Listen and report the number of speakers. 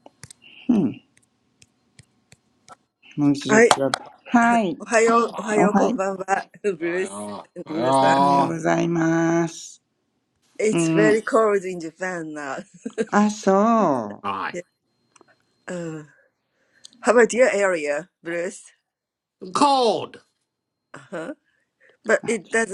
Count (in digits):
3